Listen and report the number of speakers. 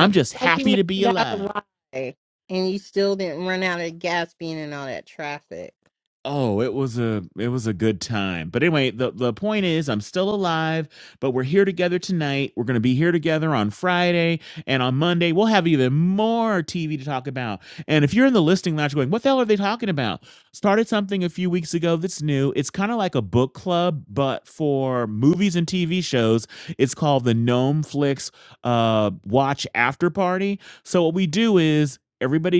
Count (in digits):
2